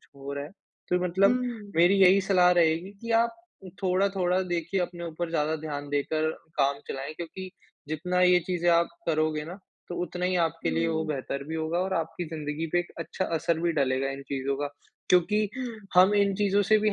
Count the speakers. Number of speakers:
two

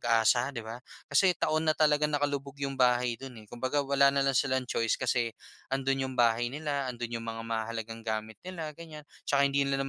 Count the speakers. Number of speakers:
one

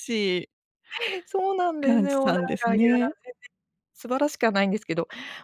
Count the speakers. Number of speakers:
two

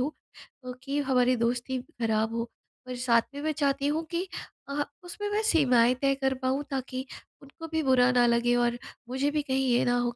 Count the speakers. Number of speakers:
one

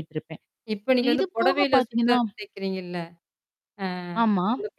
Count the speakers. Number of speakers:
two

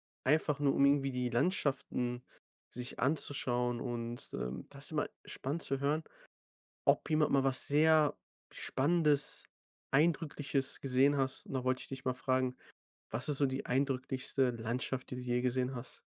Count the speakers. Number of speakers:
one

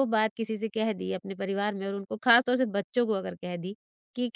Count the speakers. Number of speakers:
one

